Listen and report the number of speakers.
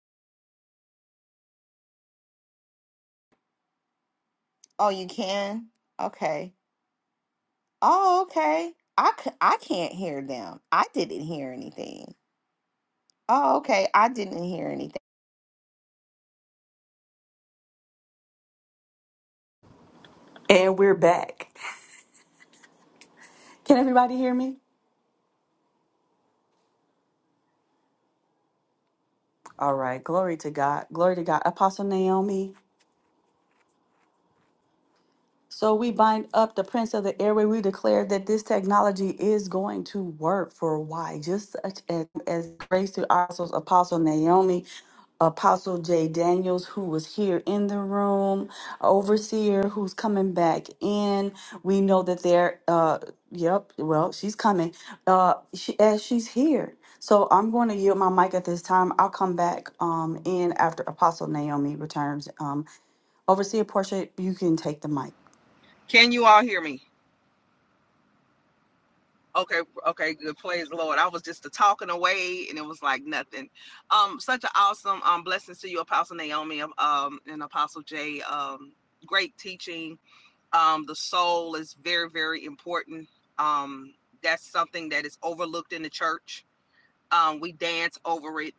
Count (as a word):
three